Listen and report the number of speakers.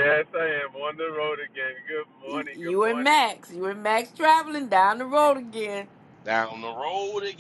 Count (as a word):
three